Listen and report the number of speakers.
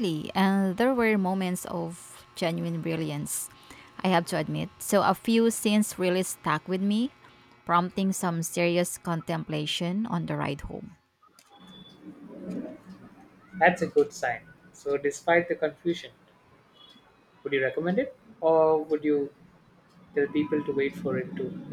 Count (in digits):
2